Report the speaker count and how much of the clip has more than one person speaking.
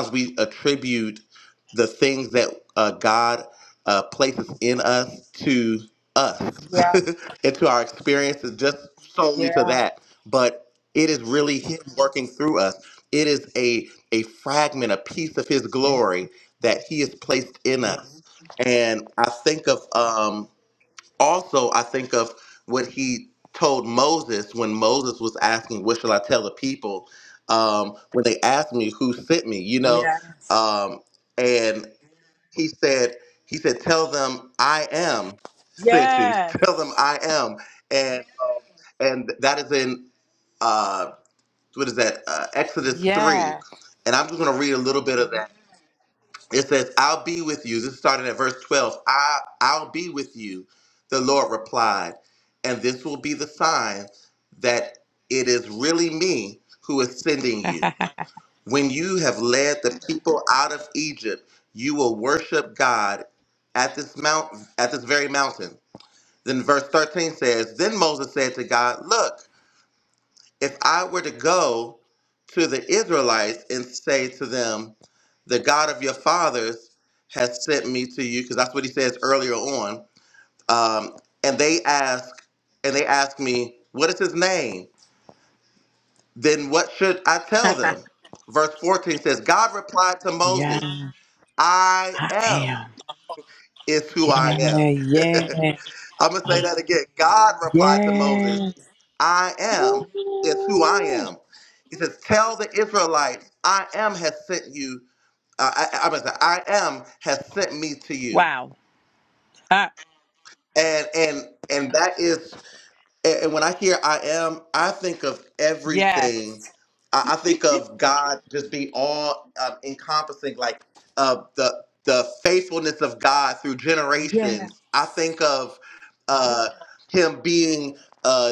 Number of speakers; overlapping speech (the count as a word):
two, about 5%